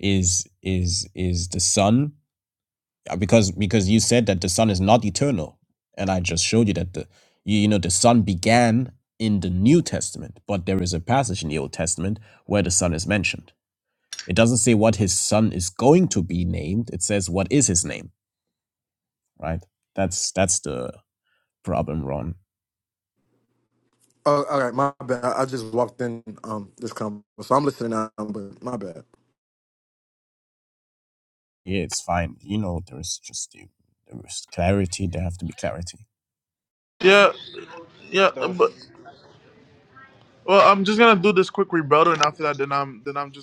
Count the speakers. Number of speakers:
three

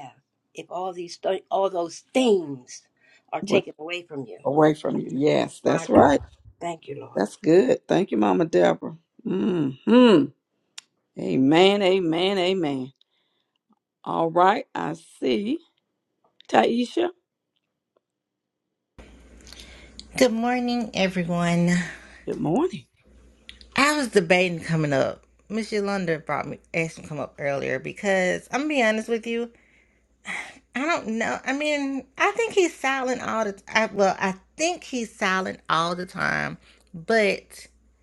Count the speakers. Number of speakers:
three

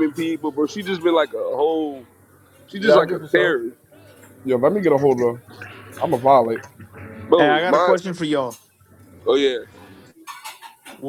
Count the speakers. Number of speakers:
three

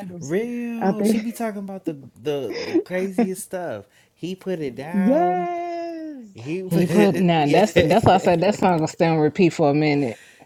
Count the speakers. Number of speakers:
three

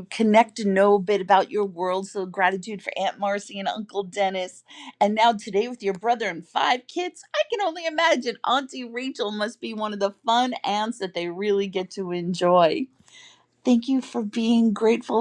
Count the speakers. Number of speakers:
one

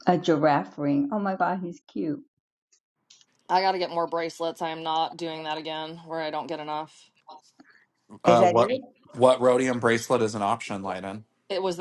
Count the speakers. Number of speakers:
three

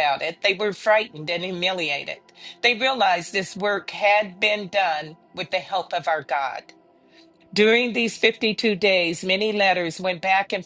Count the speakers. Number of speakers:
one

